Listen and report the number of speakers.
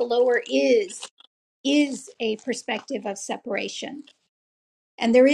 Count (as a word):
one